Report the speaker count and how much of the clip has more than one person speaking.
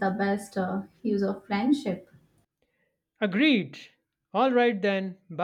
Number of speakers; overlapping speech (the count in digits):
2, no overlap